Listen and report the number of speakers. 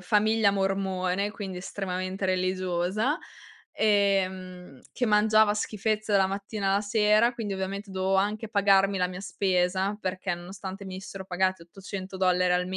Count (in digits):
1